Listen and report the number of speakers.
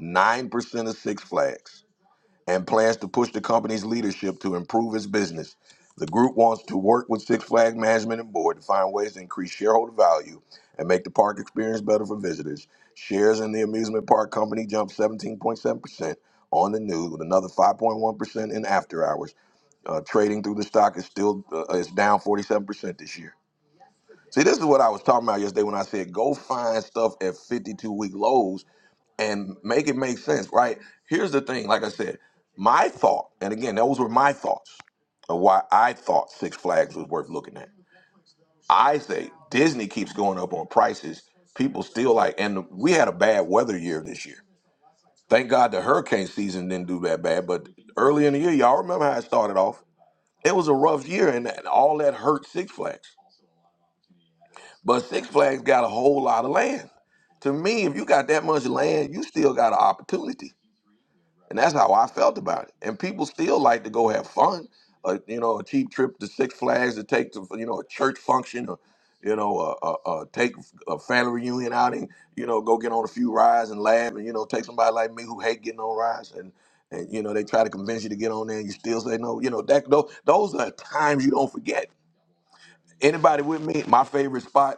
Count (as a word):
one